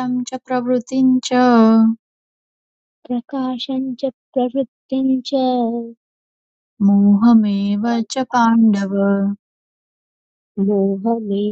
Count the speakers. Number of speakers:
2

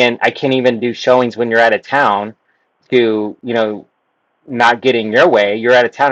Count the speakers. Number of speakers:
1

